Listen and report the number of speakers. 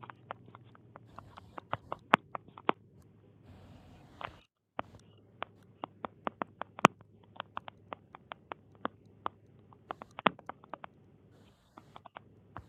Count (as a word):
zero